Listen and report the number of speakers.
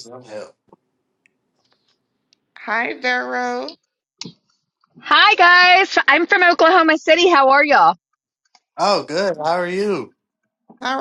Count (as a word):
three